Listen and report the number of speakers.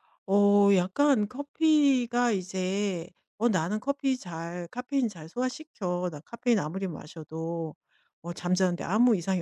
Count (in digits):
1